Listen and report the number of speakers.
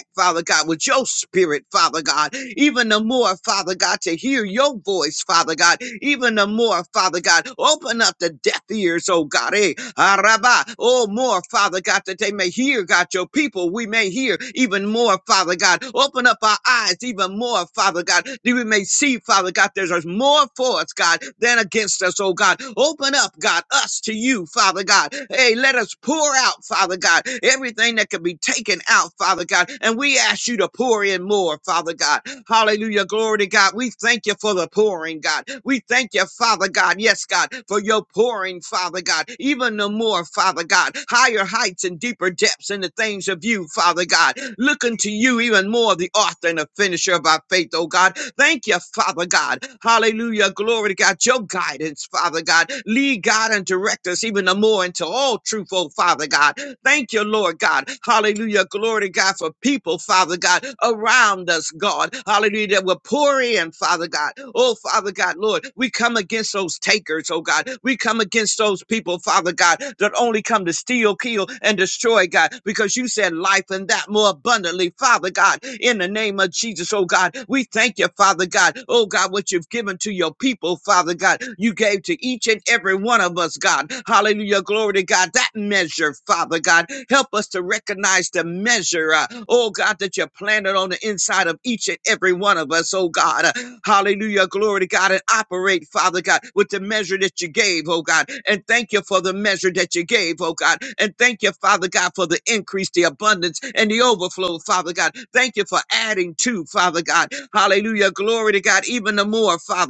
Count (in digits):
1